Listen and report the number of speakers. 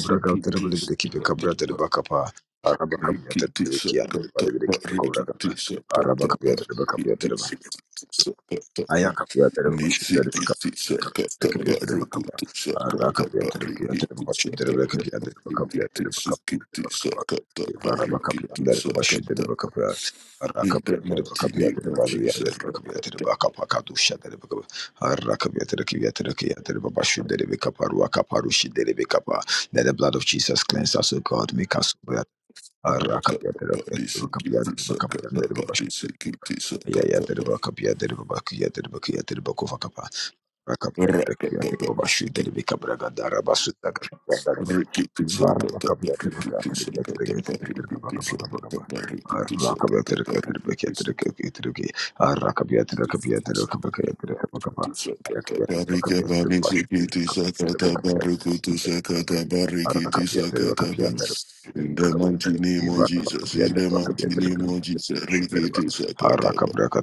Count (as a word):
two